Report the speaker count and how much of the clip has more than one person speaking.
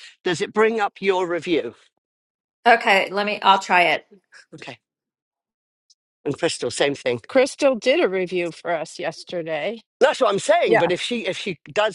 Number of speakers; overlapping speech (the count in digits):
3, about 2%